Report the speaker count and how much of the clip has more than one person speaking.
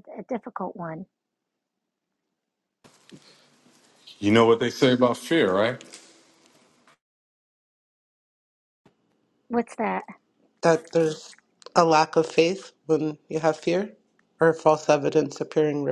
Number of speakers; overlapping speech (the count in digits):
3, no overlap